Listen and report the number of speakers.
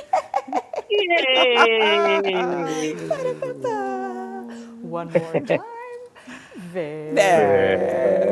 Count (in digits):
3